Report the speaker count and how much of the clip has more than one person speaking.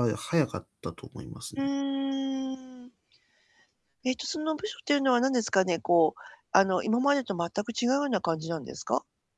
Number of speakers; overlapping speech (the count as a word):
two, about 1%